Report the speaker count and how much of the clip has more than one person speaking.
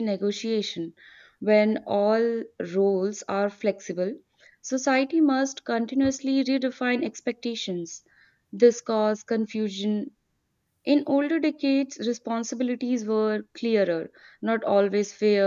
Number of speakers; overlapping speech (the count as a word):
one, no overlap